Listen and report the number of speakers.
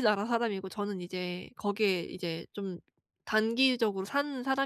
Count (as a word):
one